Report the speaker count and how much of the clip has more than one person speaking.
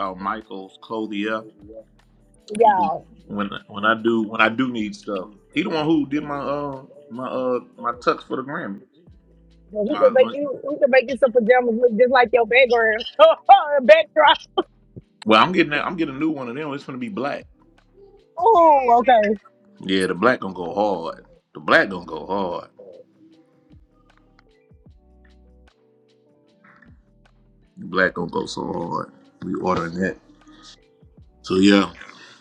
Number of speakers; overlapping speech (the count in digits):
2, about 2%